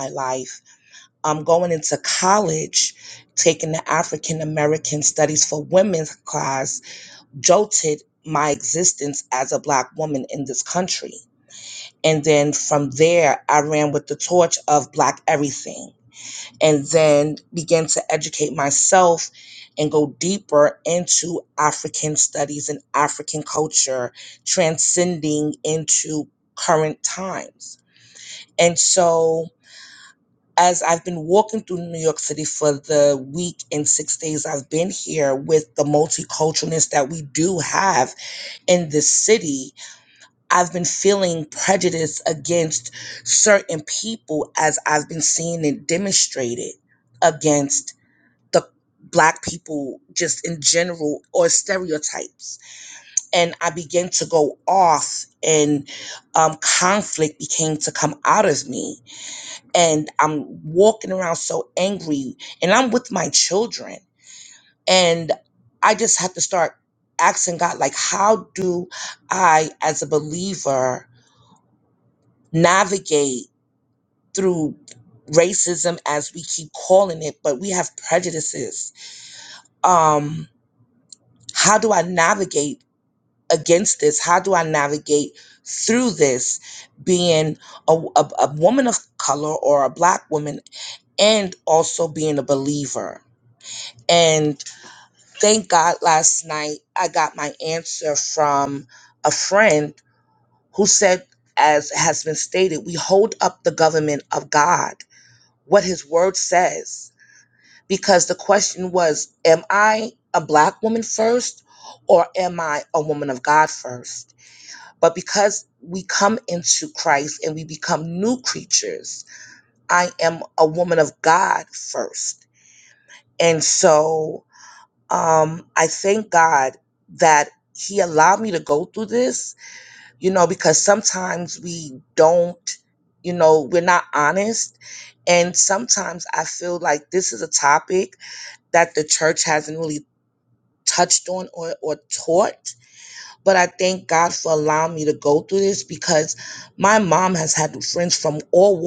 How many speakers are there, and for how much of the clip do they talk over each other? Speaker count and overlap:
1, no overlap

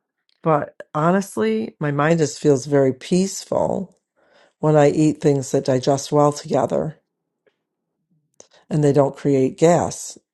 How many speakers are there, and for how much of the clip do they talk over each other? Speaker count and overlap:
1, no overlap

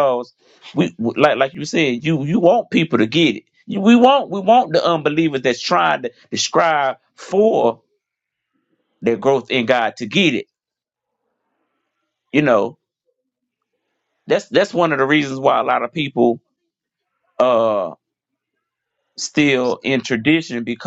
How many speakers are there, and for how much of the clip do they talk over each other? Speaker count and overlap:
1, no overlap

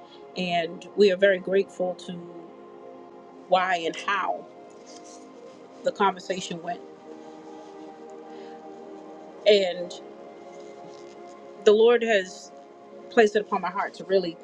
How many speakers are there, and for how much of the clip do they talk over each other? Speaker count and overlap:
1, no overlap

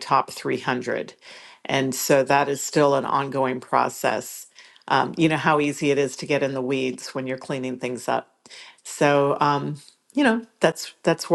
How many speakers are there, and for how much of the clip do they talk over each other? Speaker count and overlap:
1, no overlap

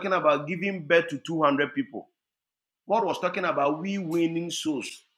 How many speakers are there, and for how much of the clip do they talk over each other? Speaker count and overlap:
1, no overlap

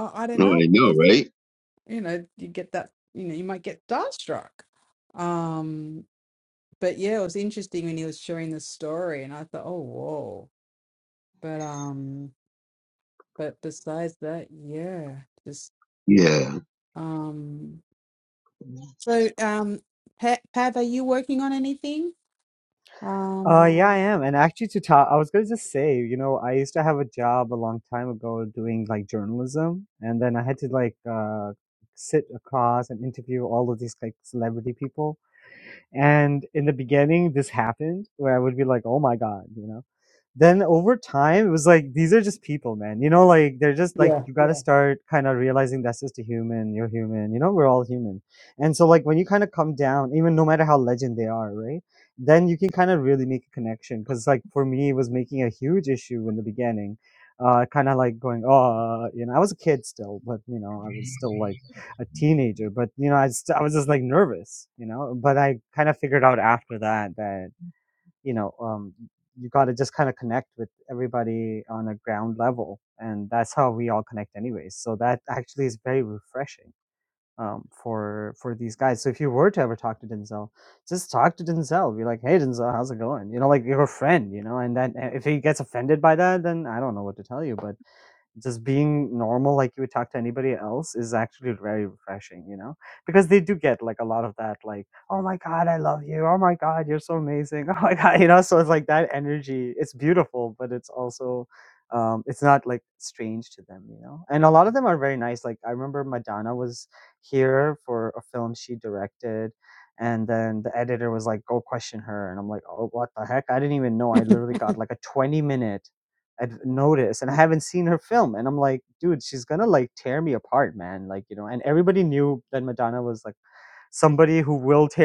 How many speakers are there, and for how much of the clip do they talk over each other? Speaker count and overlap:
3, about 1%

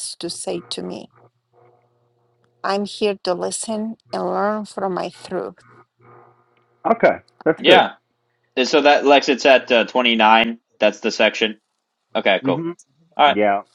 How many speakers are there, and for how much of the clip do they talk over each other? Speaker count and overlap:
3, about 4%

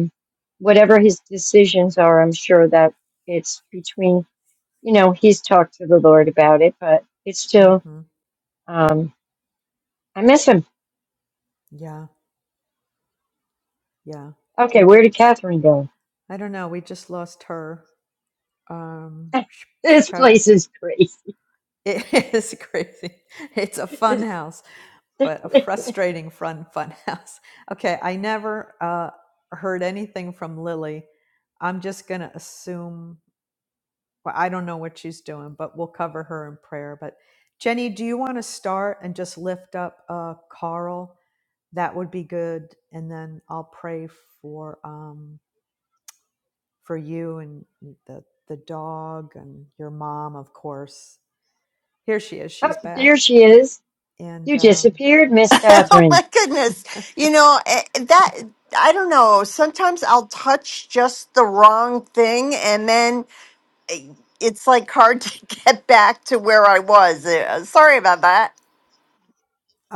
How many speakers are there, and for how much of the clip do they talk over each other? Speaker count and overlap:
3, about 4%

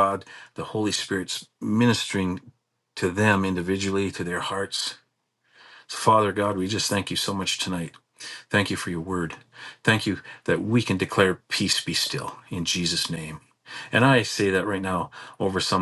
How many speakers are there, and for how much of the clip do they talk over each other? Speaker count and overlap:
1, no overlap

